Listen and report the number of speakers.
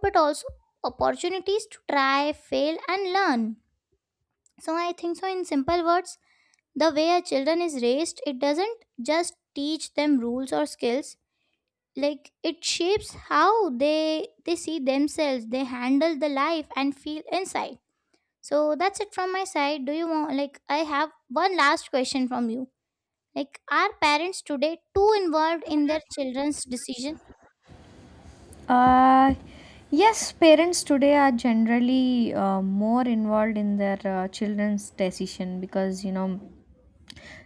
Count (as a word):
two